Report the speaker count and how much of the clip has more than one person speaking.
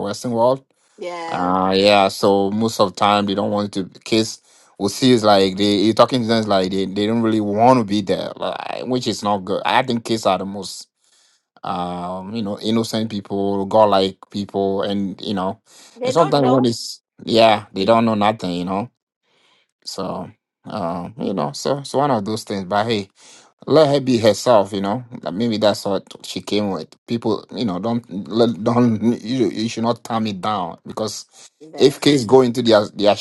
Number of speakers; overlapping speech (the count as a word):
two, about 4%